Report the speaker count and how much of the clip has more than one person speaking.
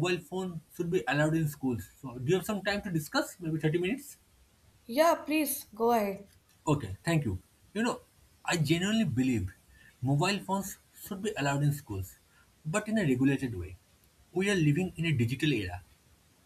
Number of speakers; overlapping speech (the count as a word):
two, no overlap